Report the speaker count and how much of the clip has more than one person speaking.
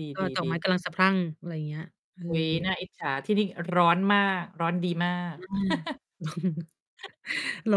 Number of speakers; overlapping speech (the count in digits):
2, about 10%